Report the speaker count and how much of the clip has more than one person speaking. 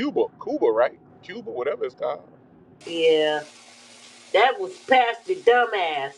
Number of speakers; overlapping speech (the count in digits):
2, no overlap